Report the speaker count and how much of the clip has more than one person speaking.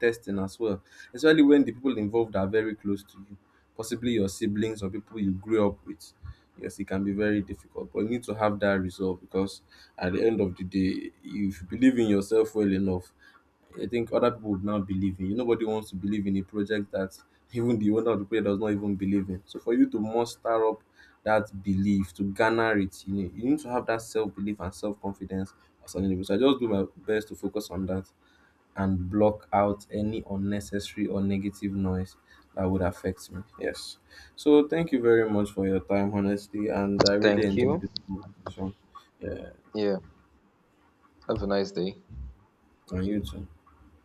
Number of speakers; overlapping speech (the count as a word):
two, about 1%